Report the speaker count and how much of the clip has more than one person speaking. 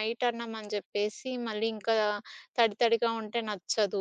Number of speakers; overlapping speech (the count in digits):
1, no overlap